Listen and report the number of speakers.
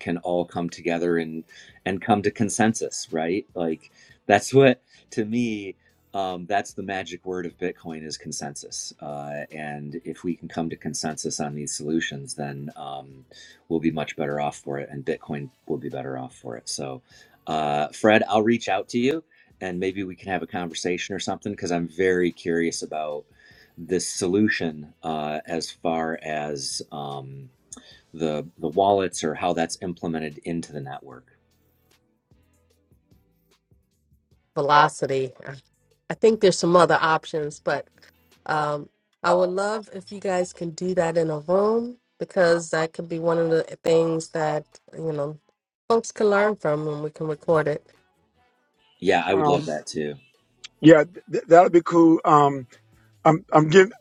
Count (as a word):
three